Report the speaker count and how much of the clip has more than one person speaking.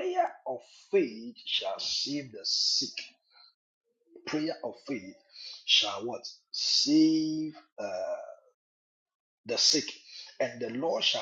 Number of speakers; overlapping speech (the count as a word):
one, no overlap